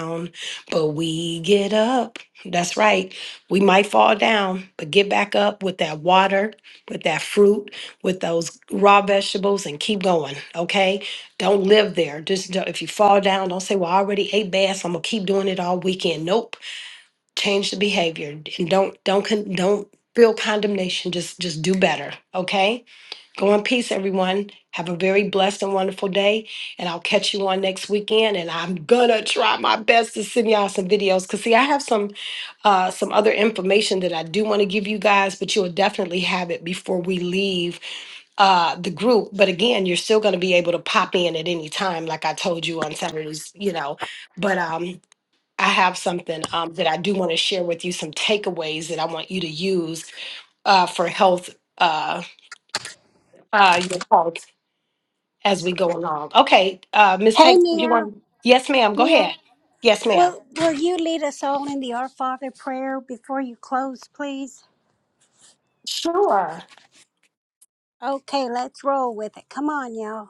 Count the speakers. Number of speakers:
2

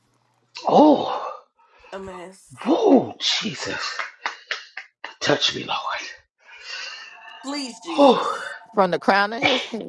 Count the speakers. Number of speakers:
3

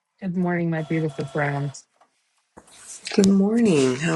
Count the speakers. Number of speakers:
2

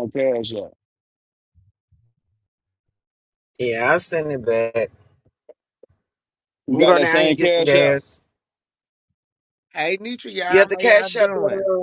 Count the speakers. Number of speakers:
3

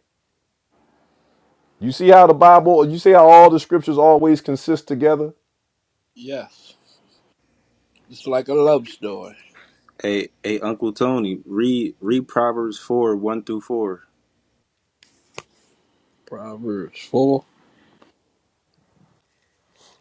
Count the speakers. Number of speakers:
3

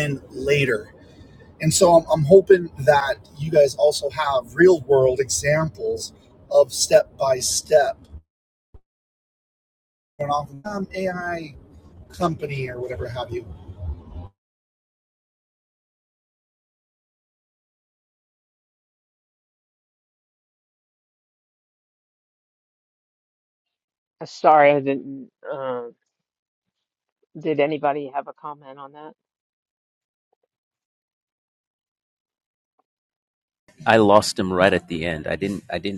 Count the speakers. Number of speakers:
3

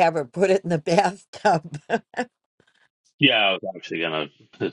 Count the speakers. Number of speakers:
2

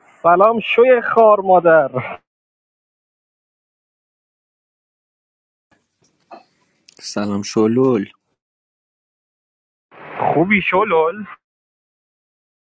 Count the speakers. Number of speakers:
2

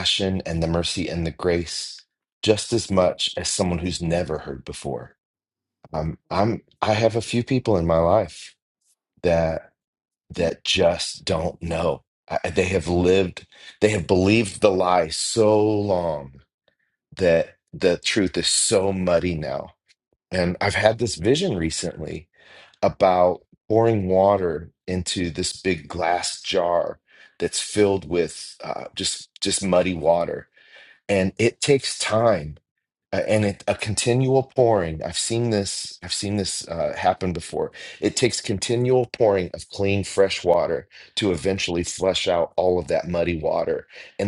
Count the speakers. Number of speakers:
1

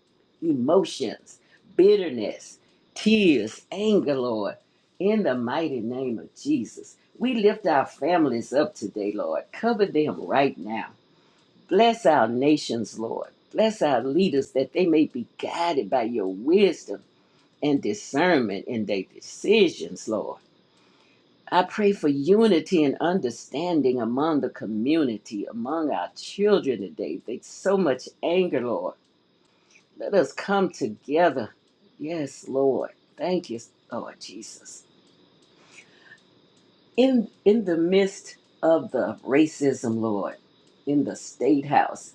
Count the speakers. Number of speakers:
1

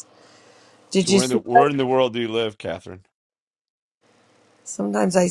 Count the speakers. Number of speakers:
2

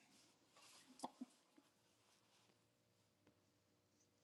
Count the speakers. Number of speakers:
0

